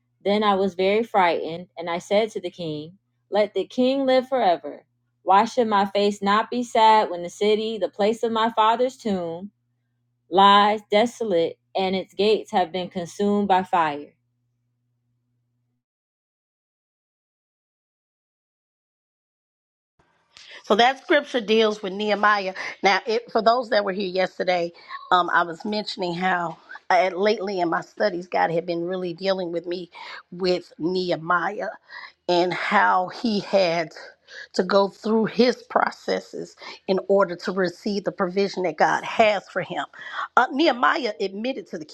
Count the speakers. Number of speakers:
2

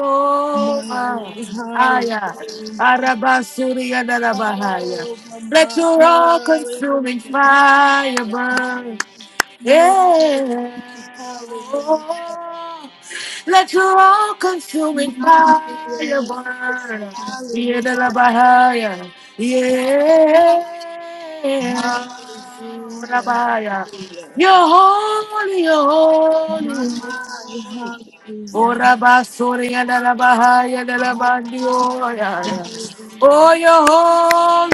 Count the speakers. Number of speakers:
2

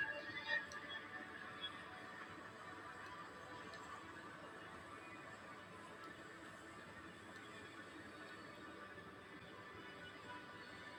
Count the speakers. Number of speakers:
0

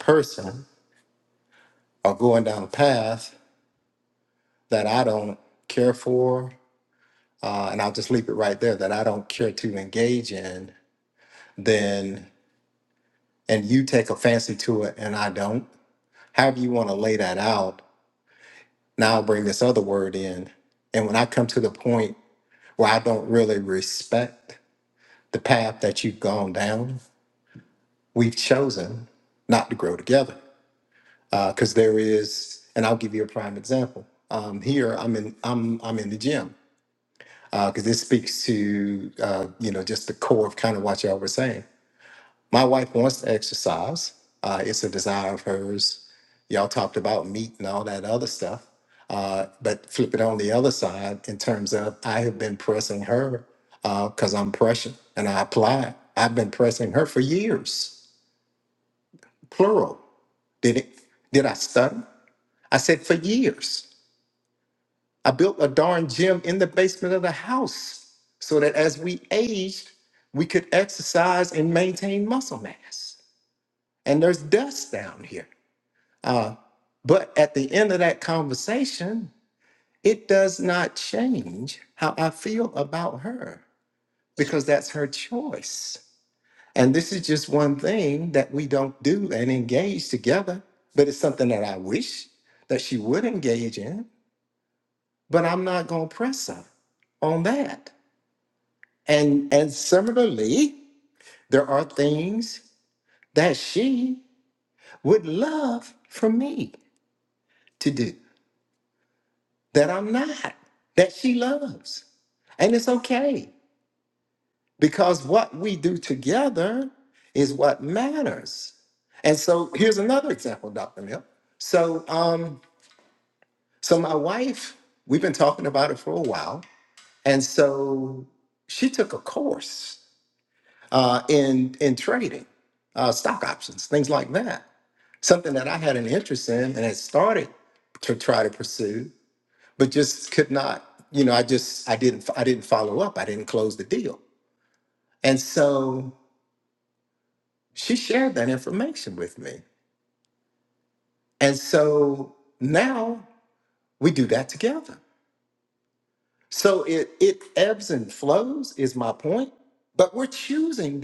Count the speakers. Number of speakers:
1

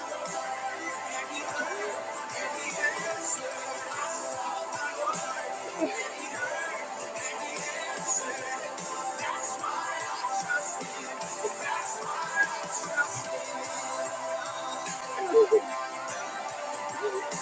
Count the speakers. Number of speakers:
0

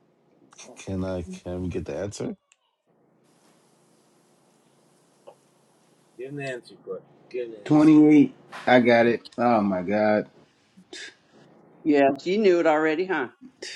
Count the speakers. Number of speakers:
4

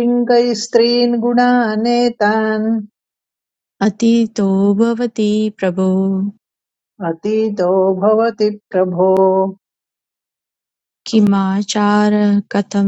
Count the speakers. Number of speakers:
2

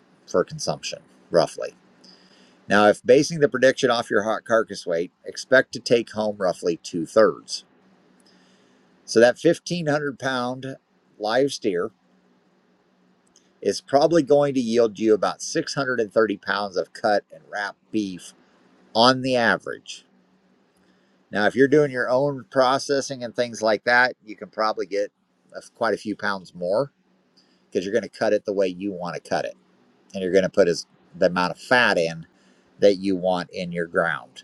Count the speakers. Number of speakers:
1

